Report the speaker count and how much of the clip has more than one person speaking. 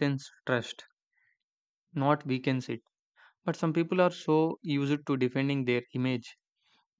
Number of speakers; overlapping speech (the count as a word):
one, no overlap